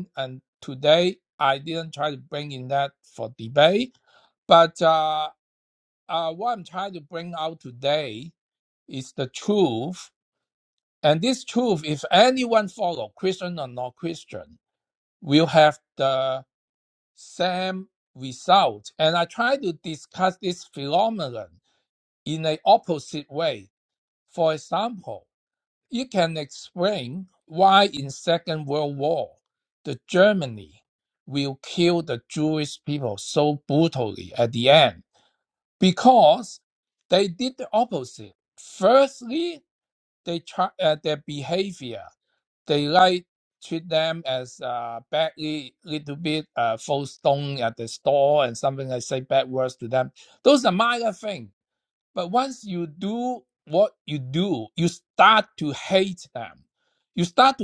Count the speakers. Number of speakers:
one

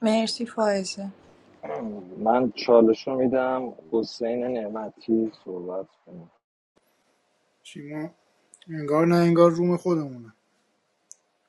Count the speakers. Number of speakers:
three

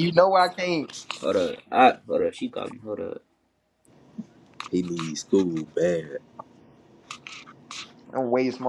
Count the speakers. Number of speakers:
three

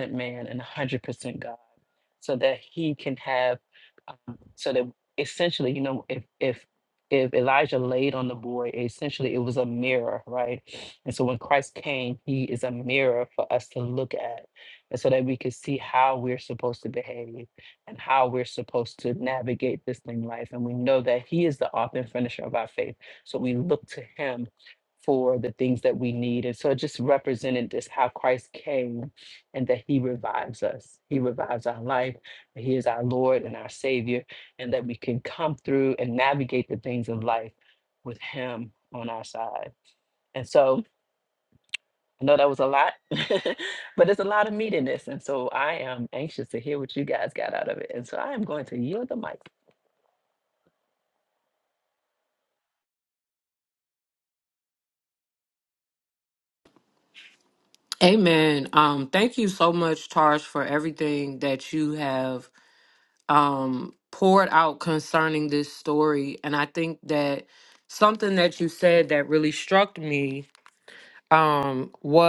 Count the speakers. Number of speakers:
two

